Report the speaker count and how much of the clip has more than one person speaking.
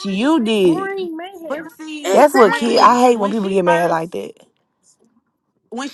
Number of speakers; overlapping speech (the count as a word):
three, about 39%